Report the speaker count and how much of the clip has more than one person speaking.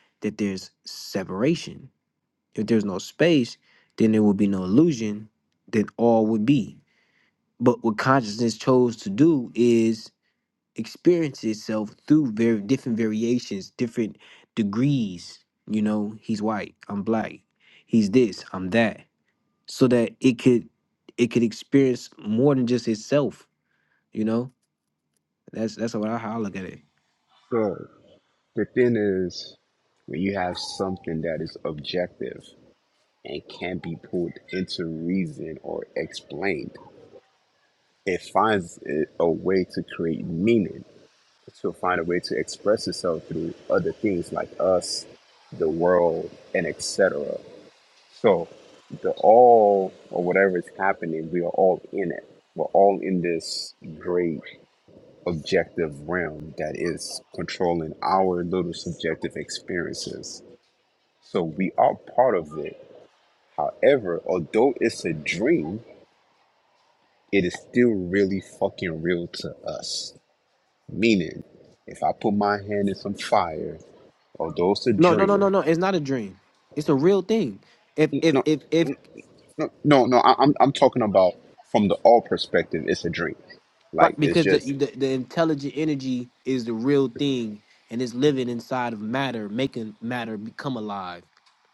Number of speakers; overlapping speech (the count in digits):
2, about 2%